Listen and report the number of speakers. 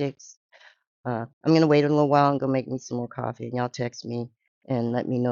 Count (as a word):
one